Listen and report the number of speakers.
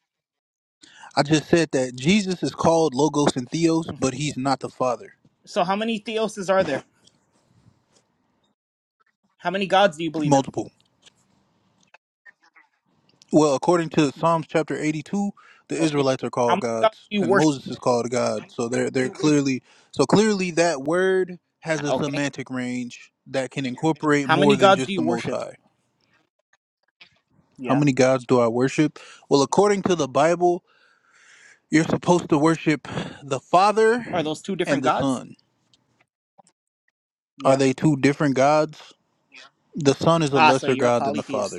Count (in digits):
2